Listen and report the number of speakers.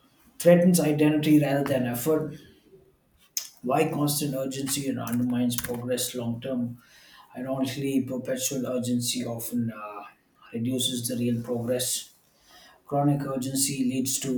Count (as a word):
one